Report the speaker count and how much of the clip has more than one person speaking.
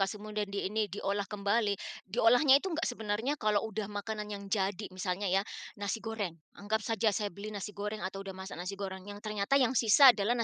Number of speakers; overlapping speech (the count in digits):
1, no overlap